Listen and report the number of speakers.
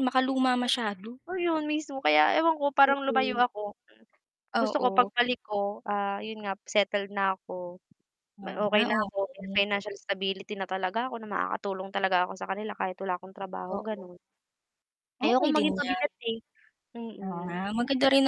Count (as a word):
two